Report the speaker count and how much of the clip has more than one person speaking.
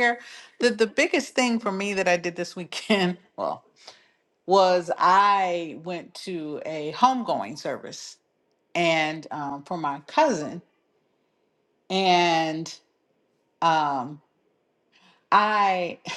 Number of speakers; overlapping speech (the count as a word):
one, no overlap